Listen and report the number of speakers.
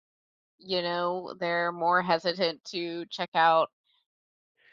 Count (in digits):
1